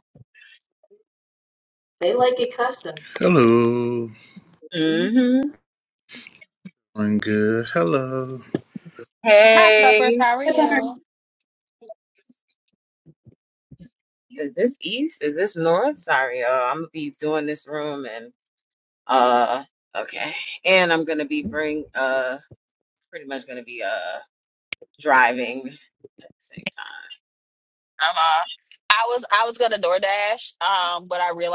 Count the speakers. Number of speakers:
four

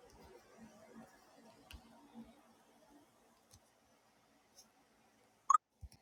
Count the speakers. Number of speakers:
zero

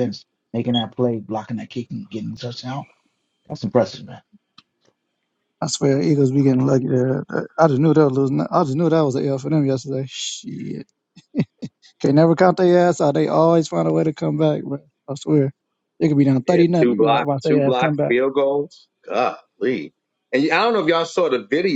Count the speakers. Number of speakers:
three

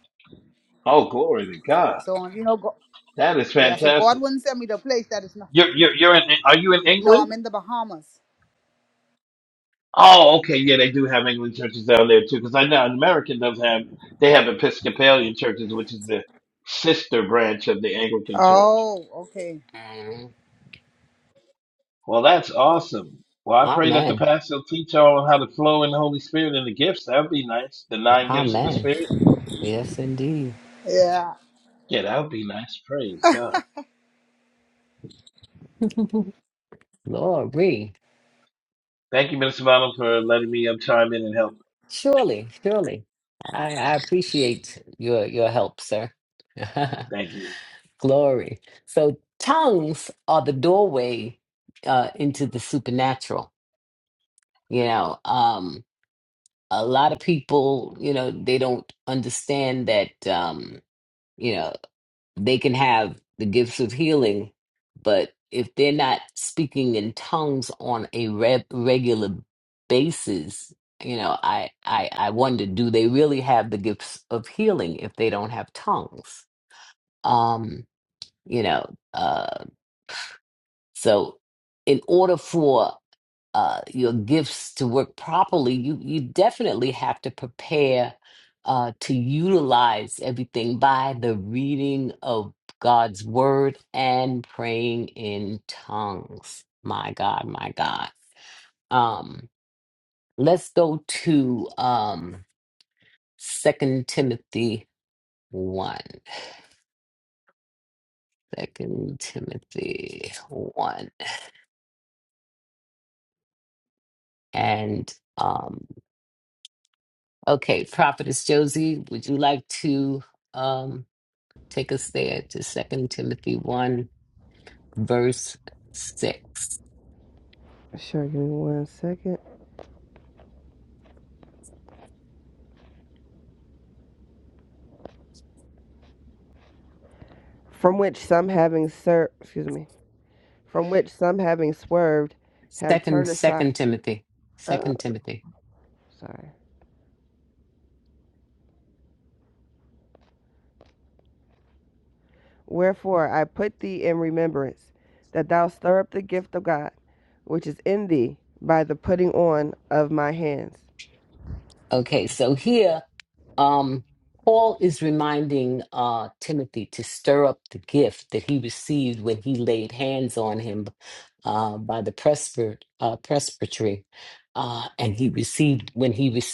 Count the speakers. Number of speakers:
four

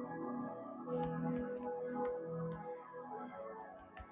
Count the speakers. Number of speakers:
zero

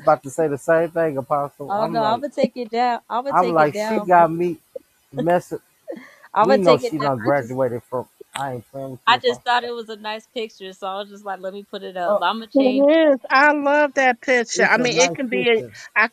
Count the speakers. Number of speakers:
three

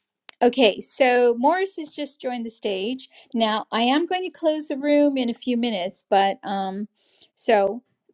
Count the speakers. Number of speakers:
one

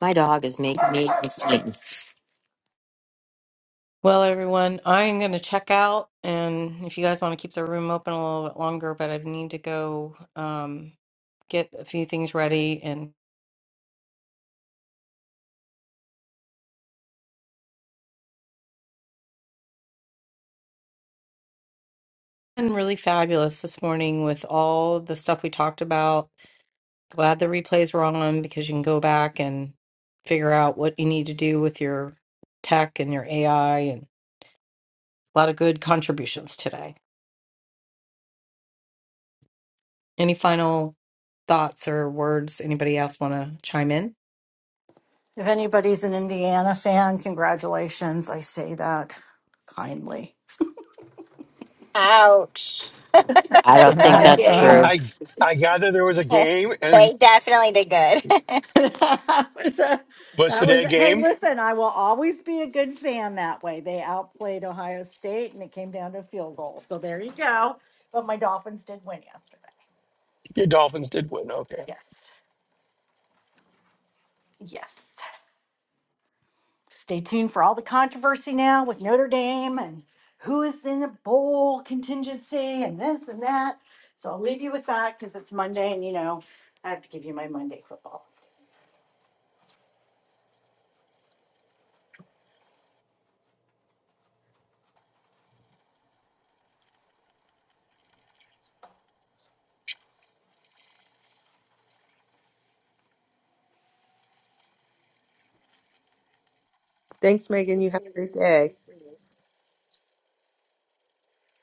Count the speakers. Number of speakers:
six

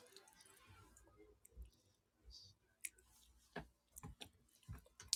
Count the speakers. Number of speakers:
zero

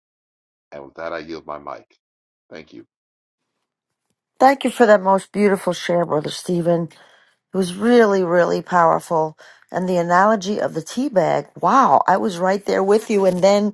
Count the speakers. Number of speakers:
two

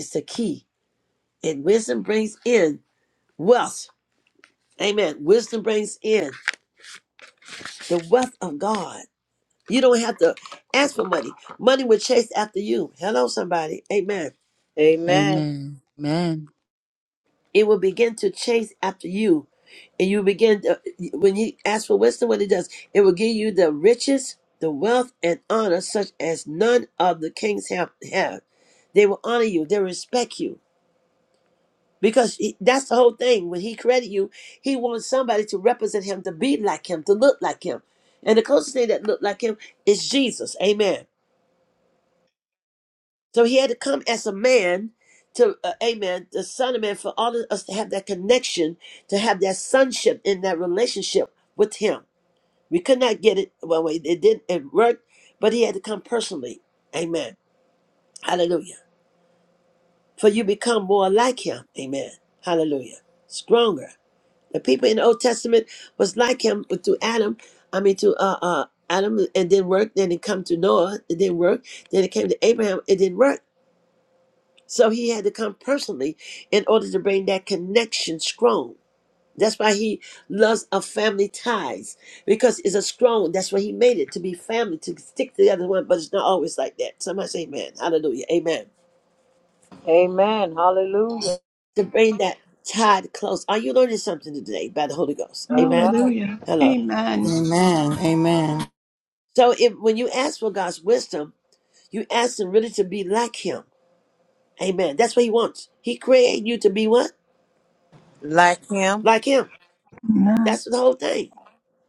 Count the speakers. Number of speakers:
five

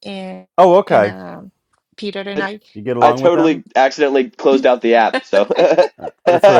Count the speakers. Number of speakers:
three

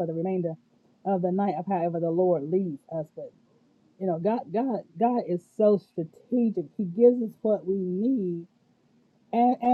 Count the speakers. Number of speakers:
one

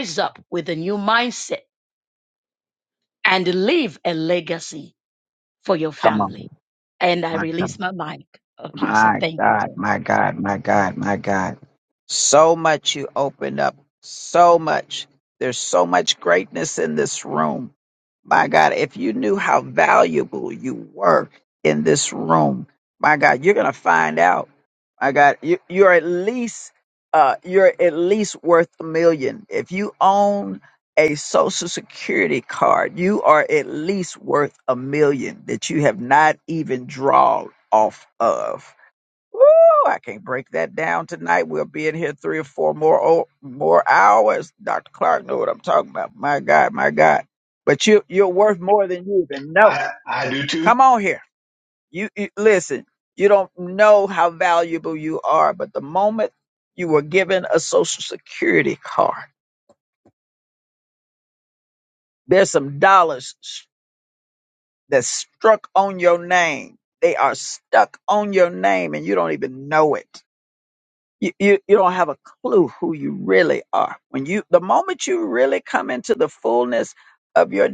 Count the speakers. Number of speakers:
three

